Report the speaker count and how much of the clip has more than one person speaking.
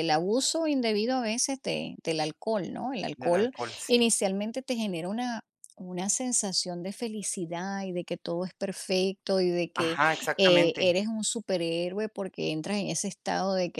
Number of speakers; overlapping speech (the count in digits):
2, about 9%